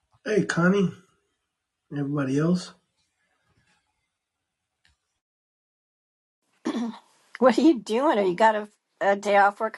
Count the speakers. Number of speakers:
2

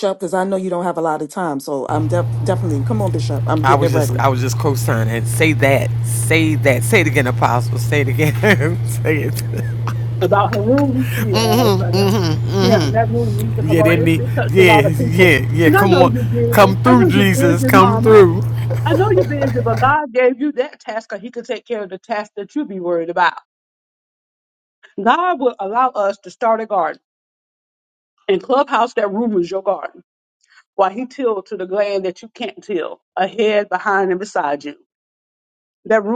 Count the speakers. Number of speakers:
3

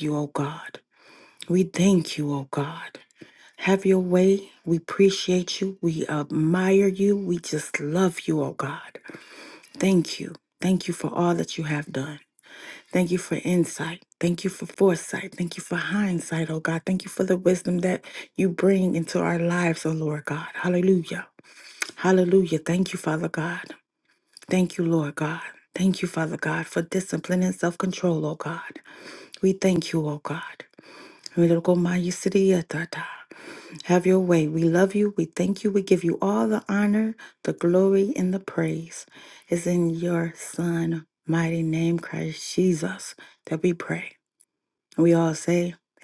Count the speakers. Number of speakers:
1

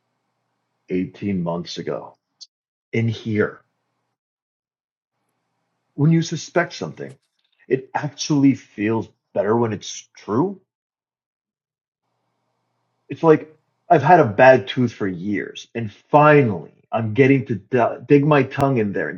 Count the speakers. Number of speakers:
1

